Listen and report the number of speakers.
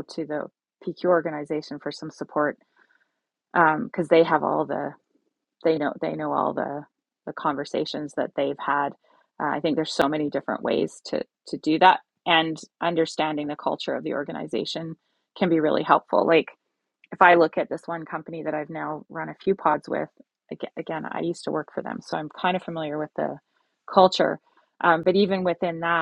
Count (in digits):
1